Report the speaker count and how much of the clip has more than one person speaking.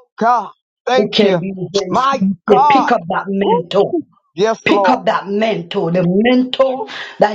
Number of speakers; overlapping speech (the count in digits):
2, about 27%